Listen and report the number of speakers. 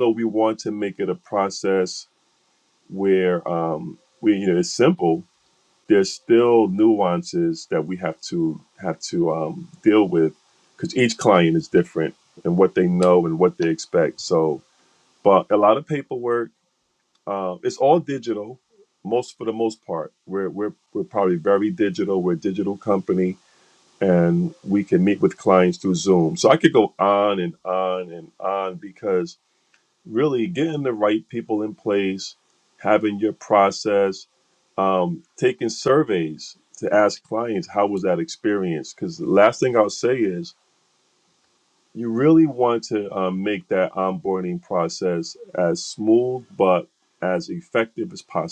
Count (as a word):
one